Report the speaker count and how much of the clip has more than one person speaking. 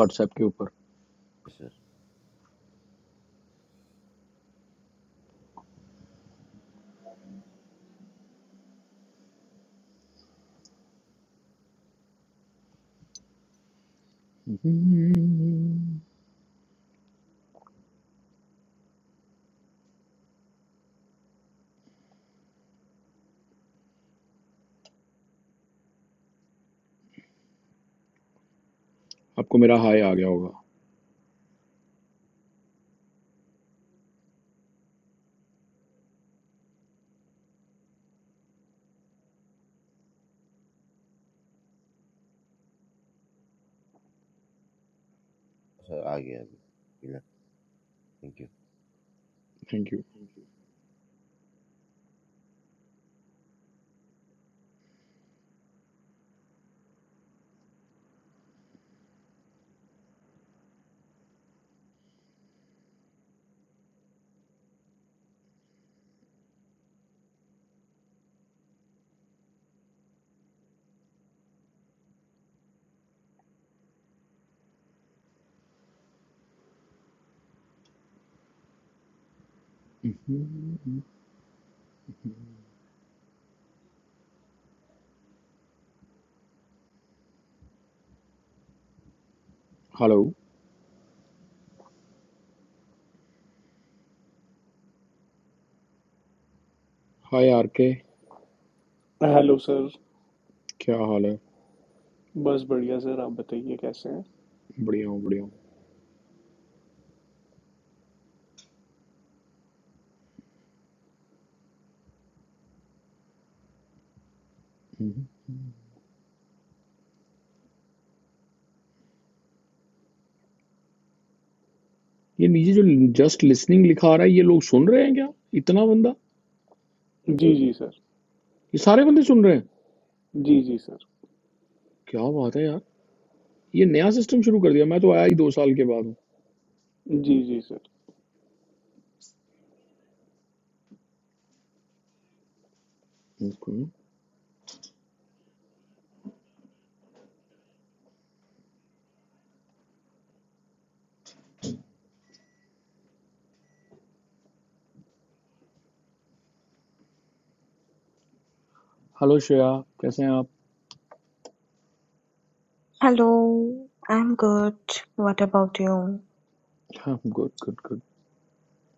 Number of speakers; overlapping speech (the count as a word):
four, no overlap